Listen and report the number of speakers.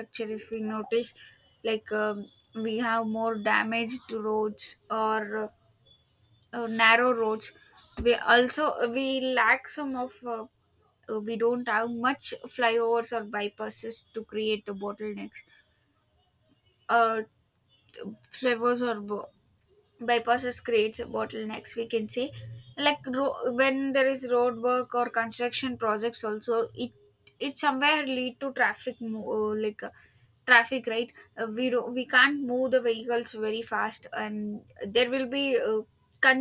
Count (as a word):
one